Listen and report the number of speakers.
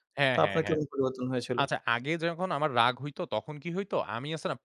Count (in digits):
2